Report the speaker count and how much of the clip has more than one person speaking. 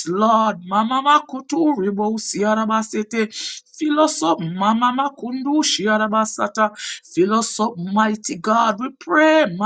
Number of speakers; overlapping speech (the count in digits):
1, no overlap